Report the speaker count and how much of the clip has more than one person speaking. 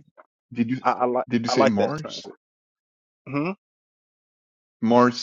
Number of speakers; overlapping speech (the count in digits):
2, about 17%